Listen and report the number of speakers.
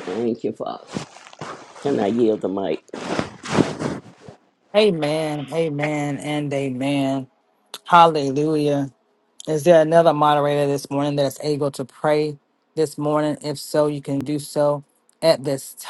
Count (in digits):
2